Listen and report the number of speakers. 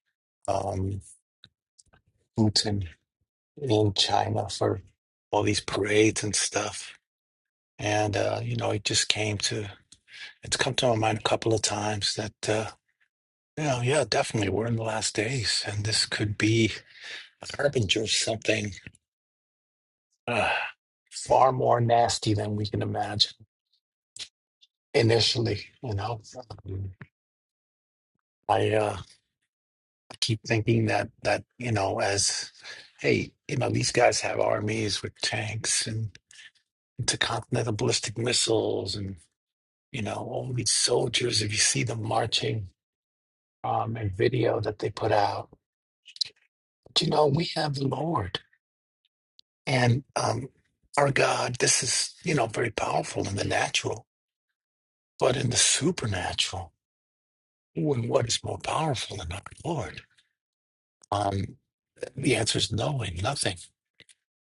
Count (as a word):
one